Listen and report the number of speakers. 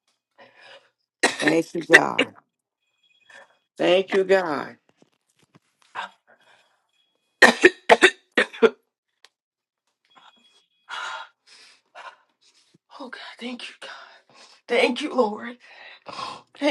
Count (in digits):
2